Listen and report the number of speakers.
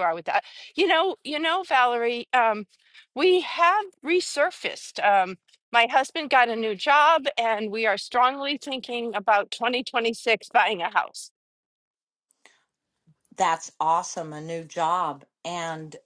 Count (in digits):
2